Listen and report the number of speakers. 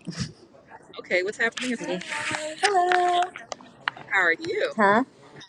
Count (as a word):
two